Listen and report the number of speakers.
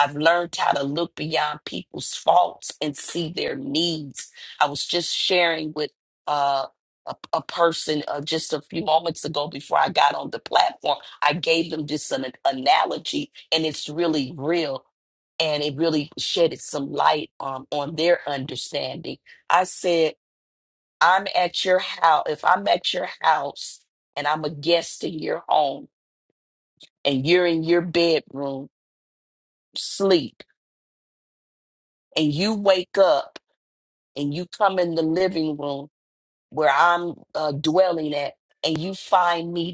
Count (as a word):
one